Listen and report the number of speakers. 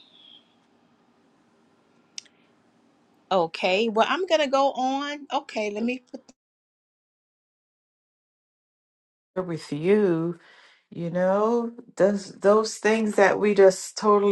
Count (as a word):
two